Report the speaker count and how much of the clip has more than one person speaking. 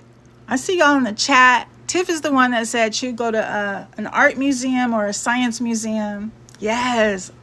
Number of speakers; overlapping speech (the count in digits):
1, no overlap